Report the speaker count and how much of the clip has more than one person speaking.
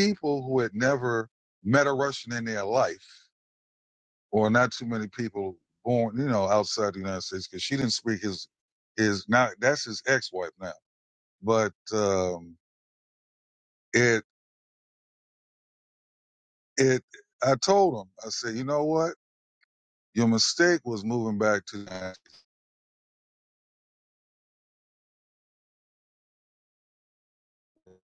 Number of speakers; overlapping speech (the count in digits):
1, no overlap